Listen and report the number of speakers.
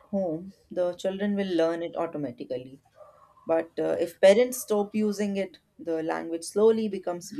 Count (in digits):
1